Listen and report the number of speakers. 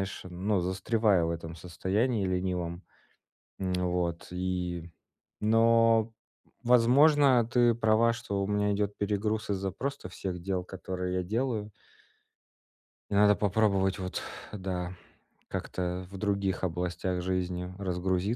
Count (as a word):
one